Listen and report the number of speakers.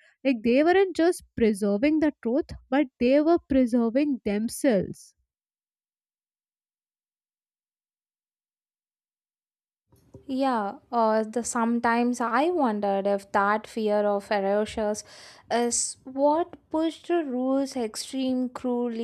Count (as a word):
two